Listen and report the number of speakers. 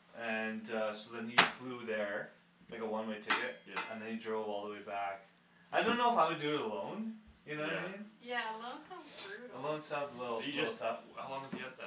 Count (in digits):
3